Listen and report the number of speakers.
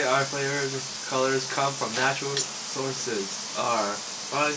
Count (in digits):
1